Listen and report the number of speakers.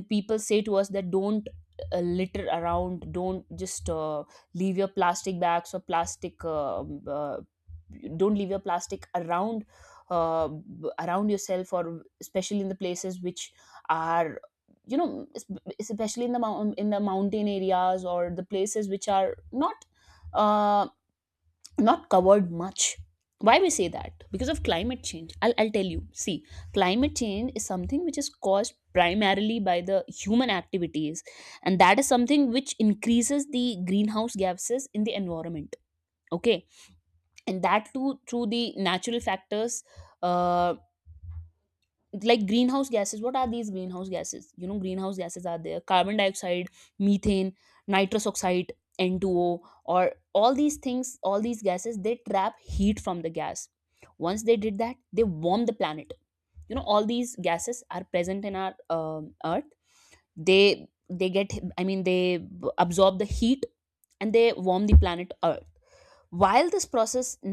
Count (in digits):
1